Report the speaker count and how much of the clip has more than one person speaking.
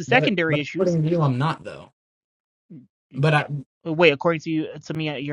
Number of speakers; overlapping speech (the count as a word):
two, about 17%